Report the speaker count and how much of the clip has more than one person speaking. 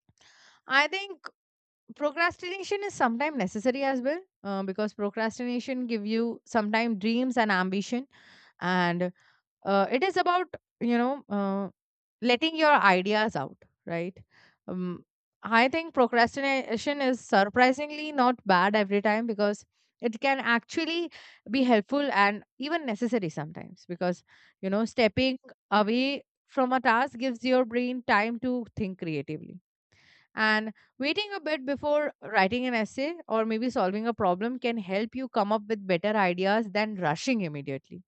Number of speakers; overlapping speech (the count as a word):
one, no overlap